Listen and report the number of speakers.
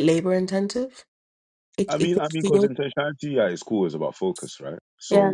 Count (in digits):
2